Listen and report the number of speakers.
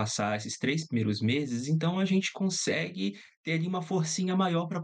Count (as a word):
one